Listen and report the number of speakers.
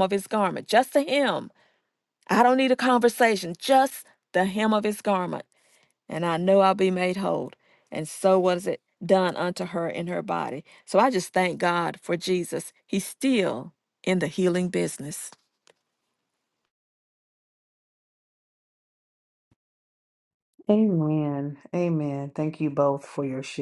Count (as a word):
two